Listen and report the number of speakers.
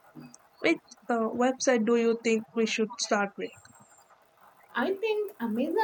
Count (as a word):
two